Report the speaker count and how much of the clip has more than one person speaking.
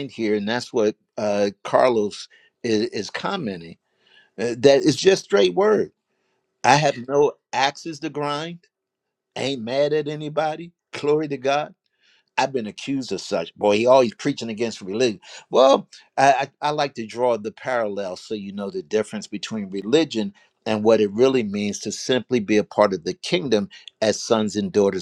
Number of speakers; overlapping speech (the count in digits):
1, no overlap